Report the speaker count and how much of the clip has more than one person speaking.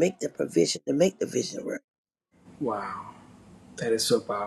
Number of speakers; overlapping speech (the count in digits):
2, no overlap